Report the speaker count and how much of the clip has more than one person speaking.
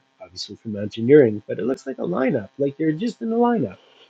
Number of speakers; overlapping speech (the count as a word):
one, no overlap